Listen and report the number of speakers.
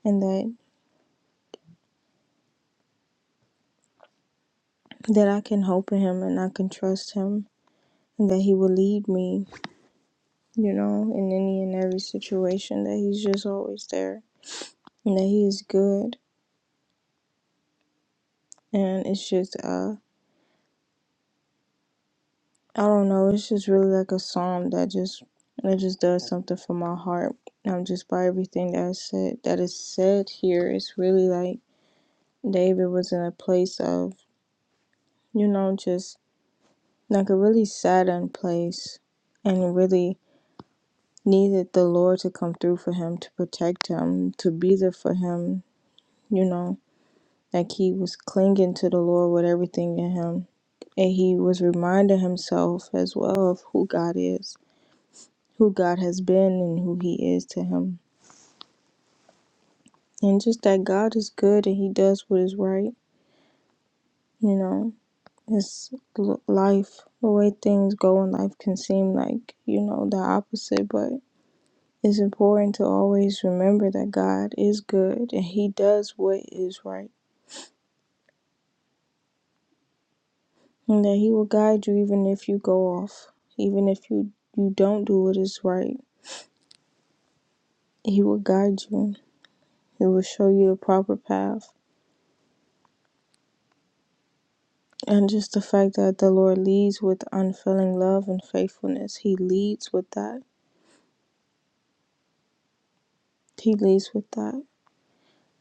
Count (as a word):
one